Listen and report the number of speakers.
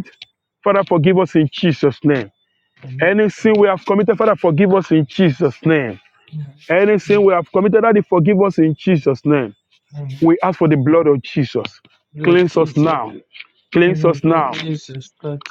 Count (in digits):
2